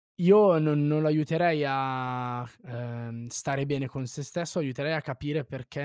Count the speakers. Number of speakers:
one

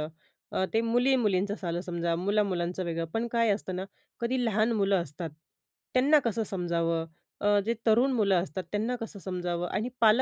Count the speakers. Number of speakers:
one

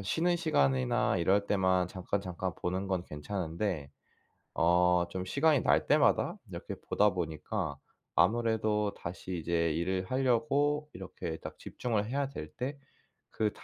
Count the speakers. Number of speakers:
one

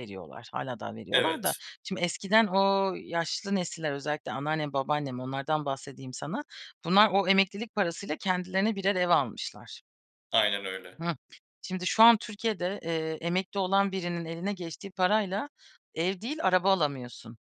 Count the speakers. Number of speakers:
two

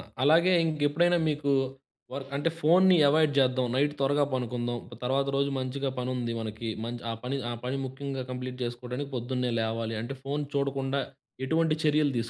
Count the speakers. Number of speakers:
one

